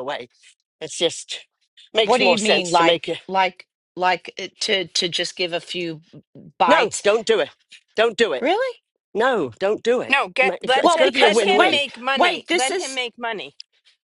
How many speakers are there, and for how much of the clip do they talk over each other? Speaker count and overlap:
three, about 31%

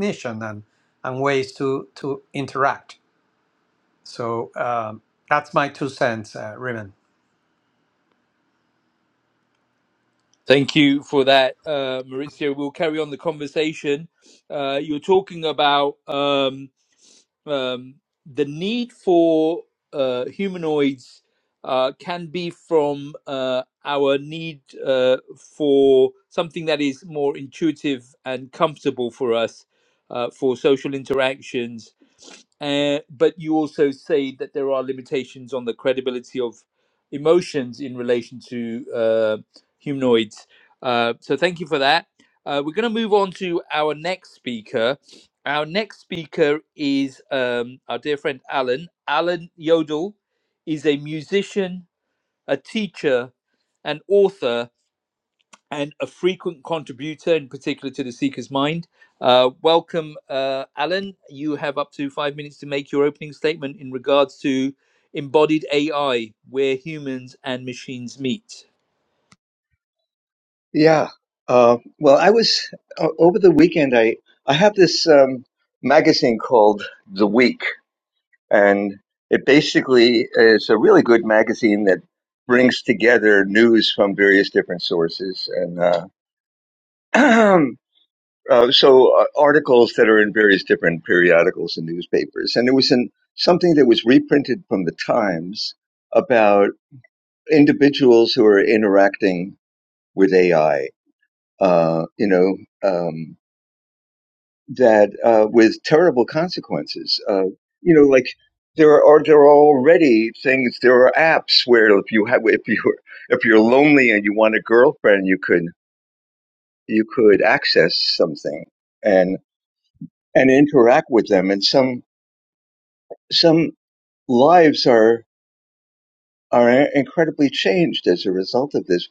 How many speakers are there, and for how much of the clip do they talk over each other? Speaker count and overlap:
three, no overlap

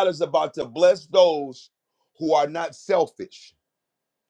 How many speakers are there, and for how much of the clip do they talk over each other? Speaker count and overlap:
one, no overlap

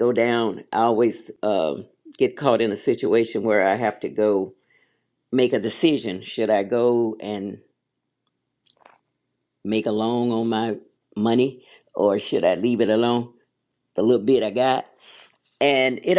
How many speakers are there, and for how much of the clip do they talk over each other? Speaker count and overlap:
one, no overlap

